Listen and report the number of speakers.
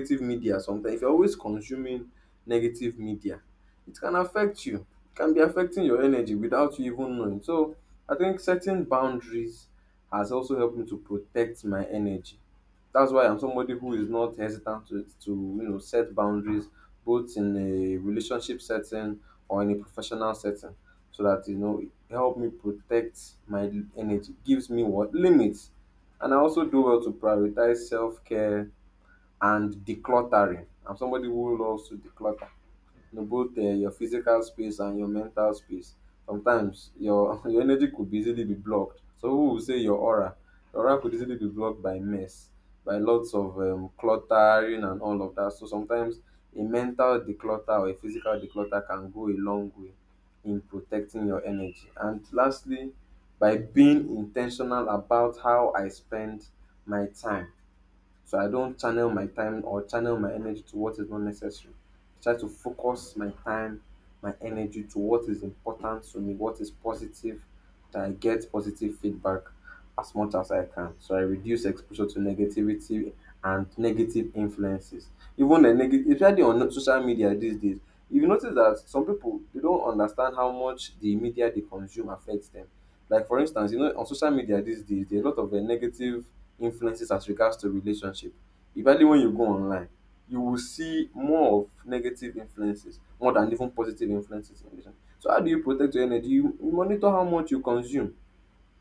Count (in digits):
1